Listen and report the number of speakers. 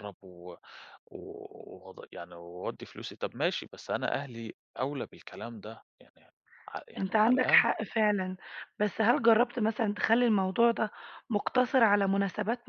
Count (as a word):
two